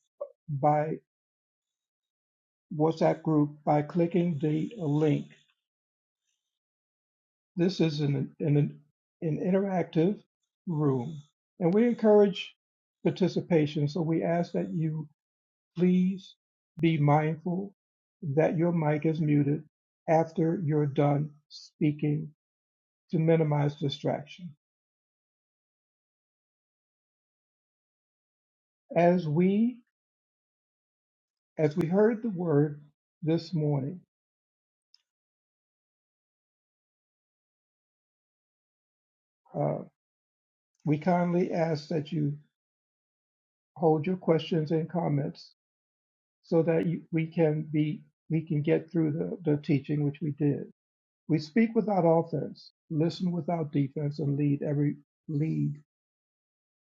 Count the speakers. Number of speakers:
1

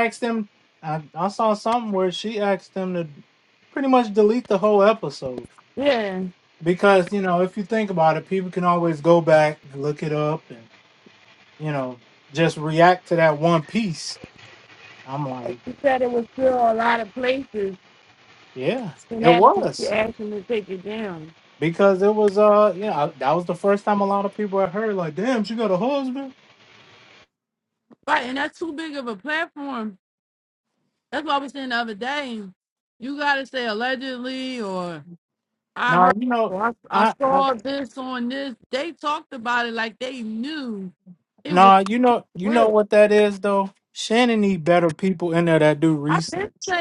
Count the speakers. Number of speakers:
2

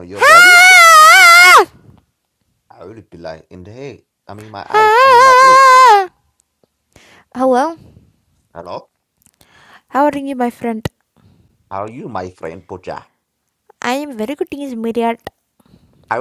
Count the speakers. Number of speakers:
2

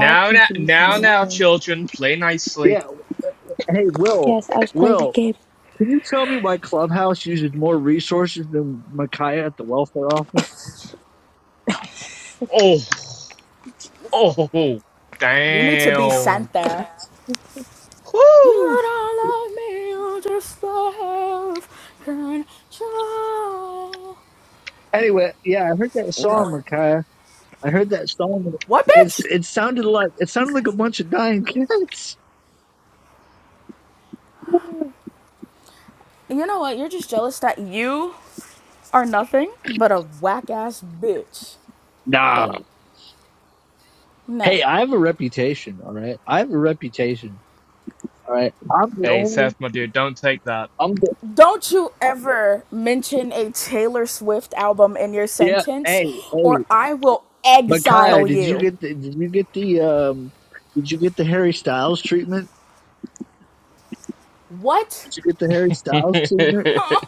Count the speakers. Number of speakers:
4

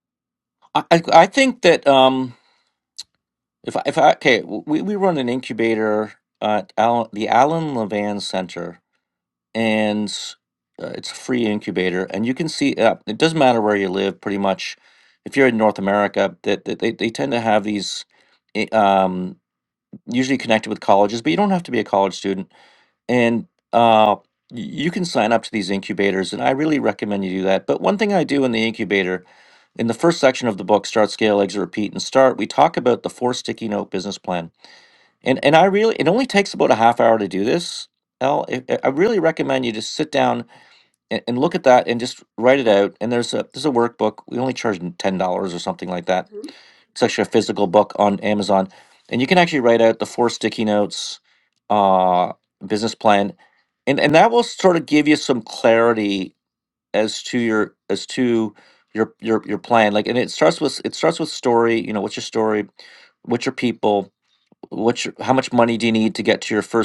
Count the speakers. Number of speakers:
1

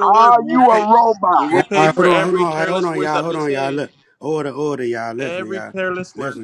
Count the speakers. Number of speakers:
3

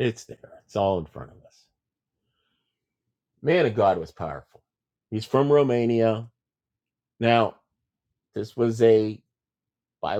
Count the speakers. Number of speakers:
1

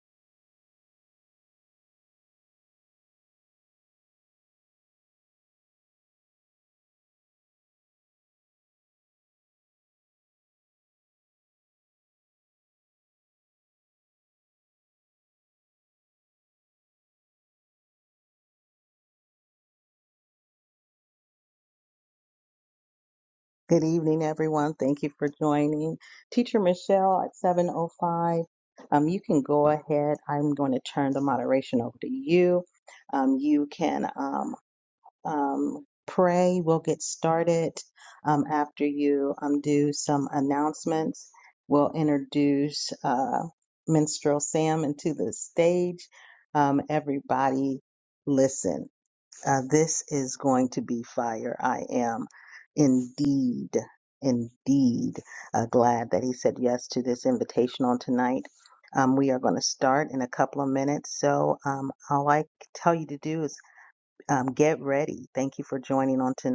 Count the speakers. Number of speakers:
1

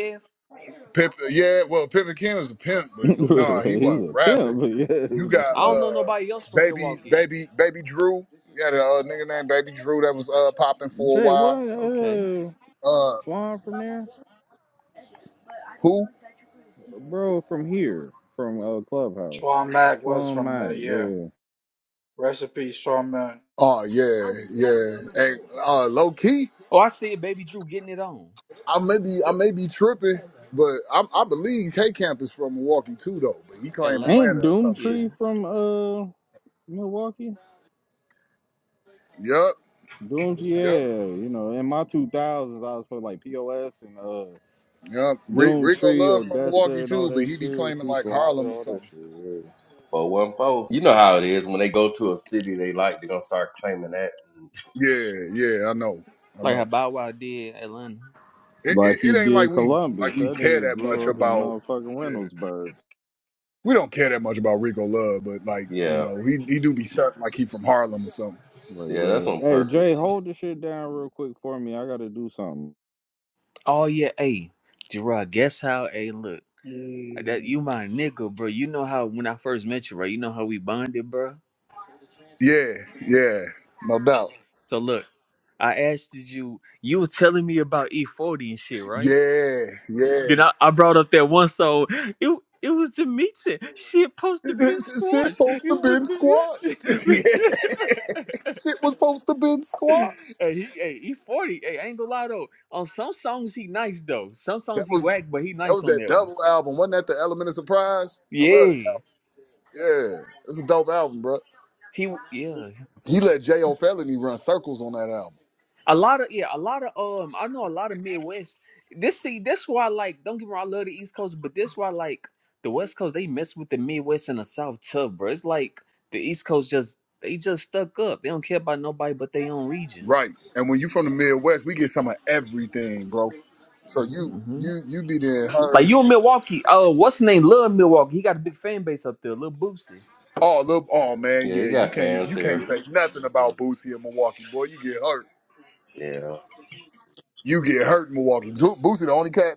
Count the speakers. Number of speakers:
5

